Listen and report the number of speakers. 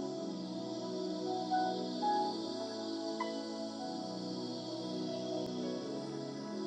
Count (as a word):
zero